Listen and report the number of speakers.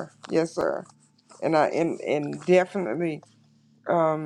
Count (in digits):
1